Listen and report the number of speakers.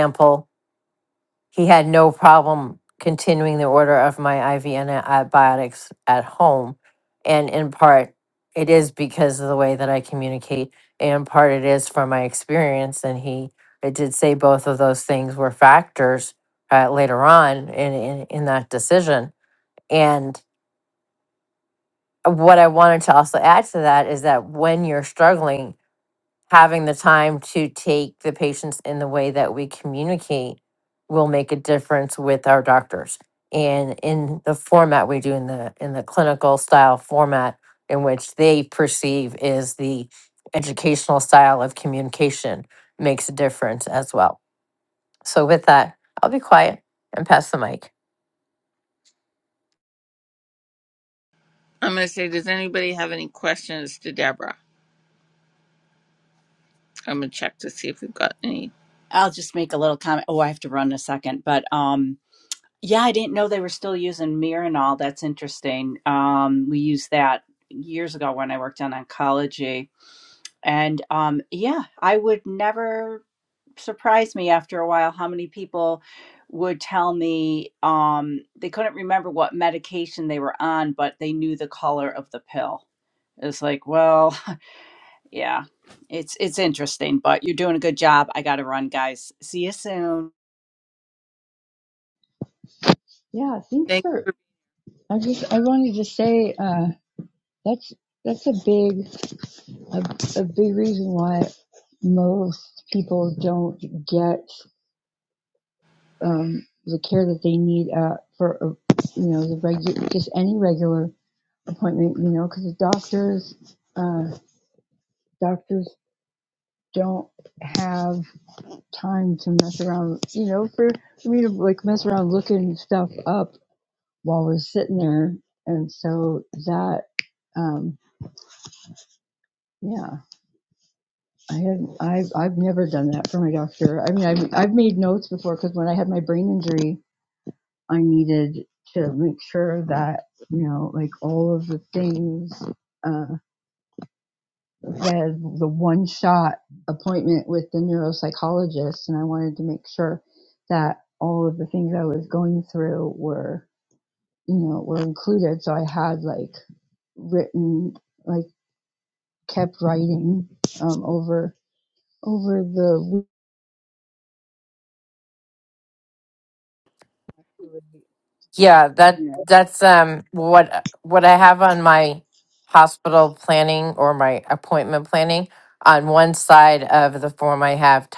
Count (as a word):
four